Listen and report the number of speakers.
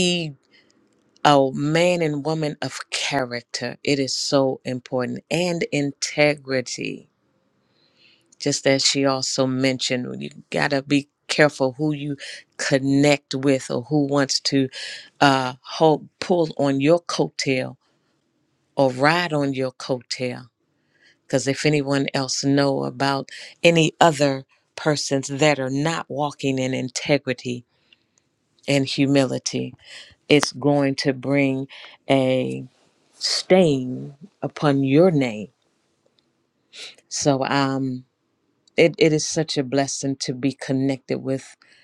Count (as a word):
one